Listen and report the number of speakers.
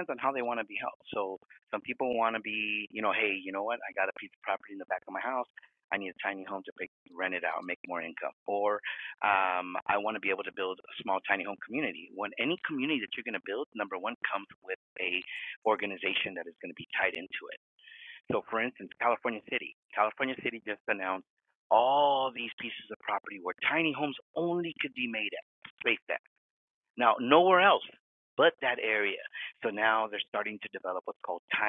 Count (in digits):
1